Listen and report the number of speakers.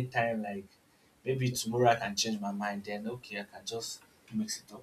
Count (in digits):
1